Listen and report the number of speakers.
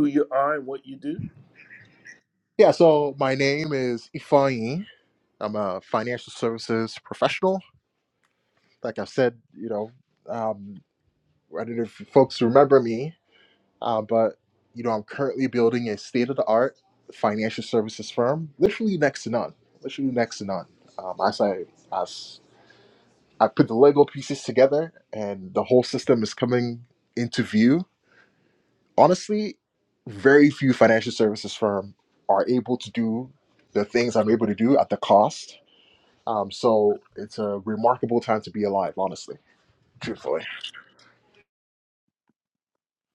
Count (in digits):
2